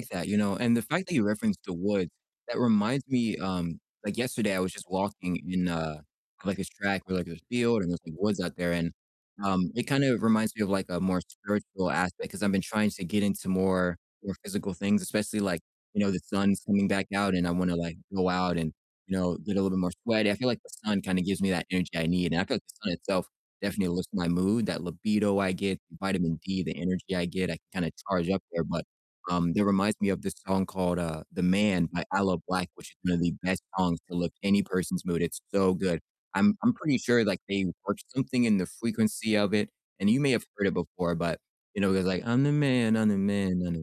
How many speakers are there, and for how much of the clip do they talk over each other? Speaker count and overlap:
one, no overlap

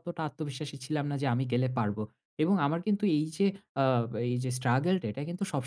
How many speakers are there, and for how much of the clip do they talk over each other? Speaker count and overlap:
one, no overlap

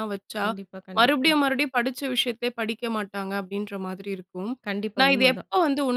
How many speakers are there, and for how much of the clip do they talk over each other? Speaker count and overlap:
two, about 13%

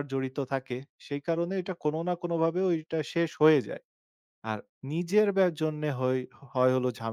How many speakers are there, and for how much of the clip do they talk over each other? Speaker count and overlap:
one, no overlap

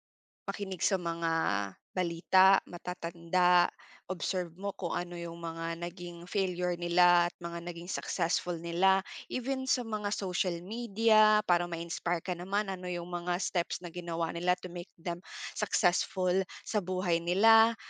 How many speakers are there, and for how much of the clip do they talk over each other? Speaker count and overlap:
one, no overlap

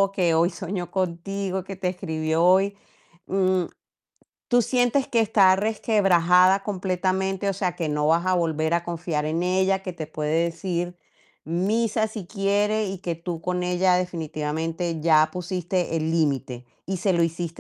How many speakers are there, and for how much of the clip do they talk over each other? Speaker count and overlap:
one, no overlap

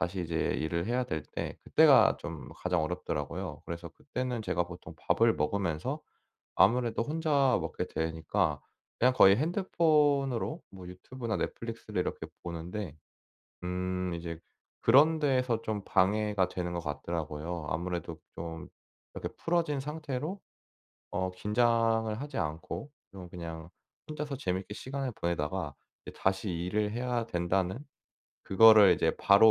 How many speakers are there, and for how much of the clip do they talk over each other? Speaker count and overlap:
one, no overlap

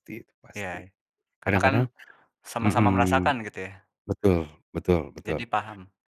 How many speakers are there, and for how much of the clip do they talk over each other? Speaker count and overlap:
two, about 23%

